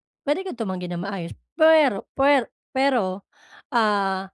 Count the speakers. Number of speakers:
one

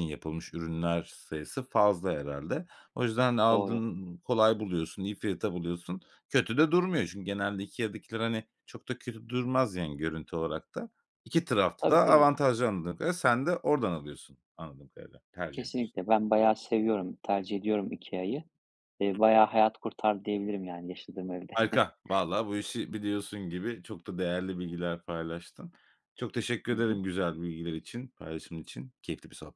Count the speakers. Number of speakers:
two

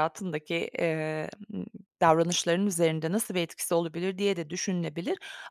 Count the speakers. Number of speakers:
one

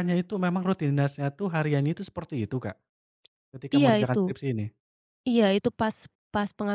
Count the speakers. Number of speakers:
two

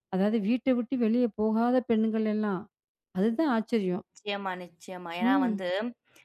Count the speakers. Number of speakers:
two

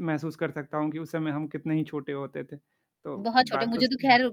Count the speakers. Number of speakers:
two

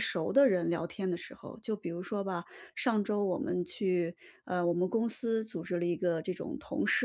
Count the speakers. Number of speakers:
one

